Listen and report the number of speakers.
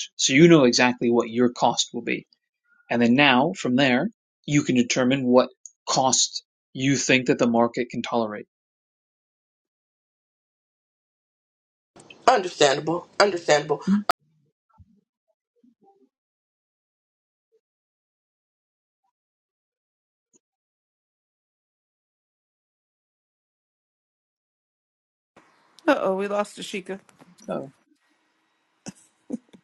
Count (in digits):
3